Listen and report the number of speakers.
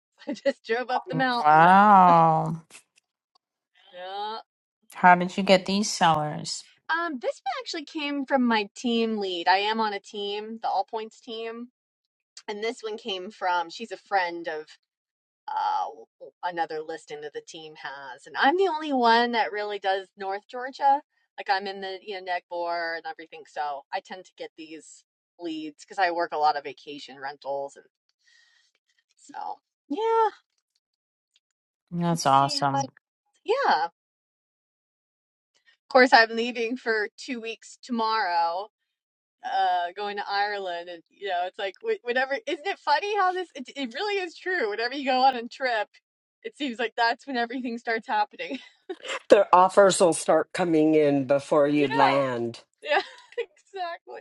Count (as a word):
three